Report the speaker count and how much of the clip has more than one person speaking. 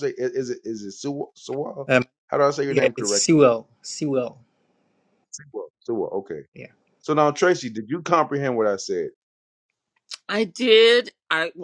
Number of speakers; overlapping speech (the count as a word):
three, about 6%